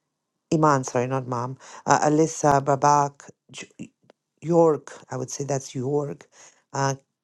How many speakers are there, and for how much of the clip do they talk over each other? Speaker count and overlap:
1, no overlap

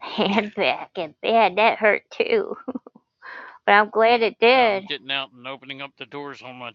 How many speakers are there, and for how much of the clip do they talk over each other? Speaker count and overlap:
2, about 8%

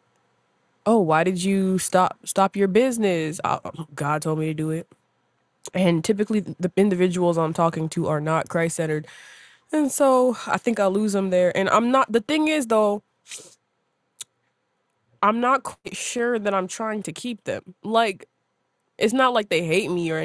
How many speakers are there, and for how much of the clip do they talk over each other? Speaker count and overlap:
1, no overlap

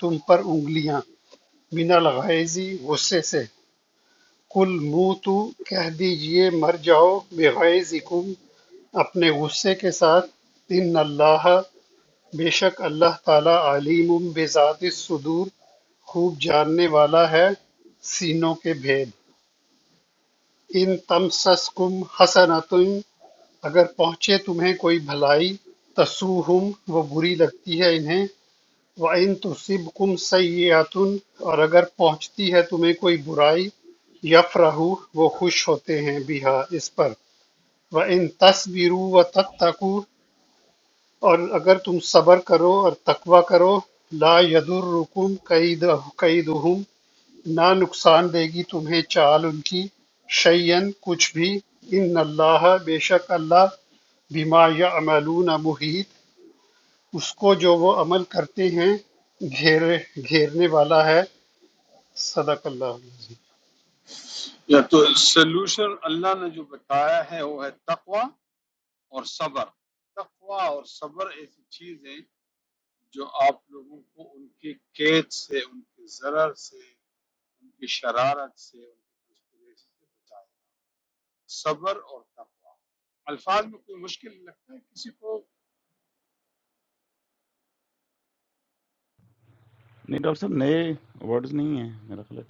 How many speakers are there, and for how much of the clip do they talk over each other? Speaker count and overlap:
3, no overlap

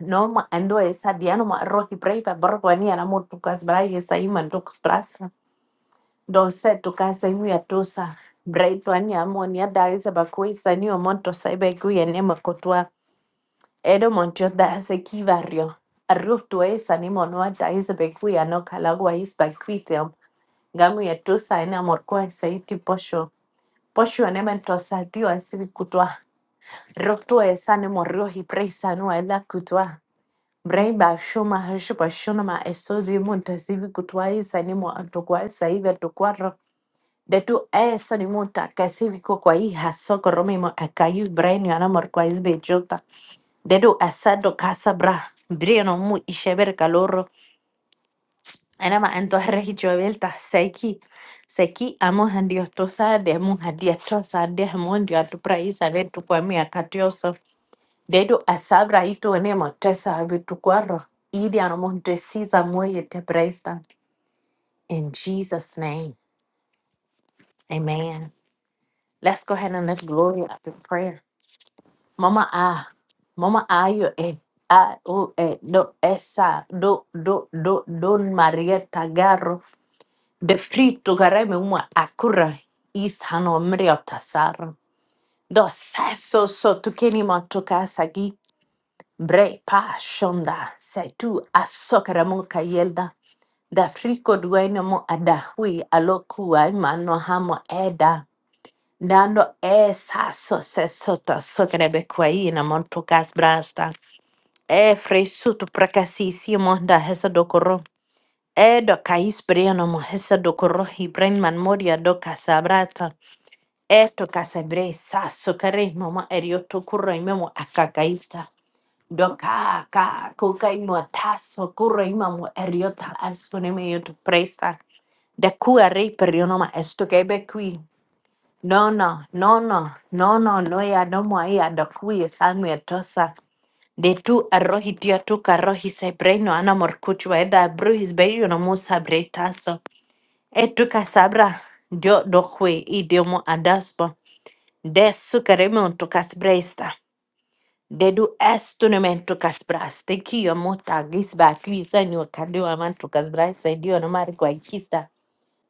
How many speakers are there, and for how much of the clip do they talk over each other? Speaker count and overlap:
1, no overlap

